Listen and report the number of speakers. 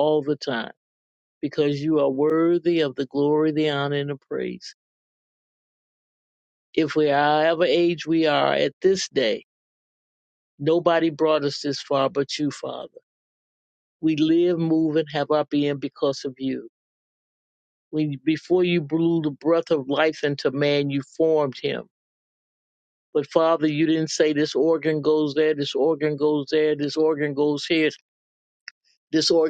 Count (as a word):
one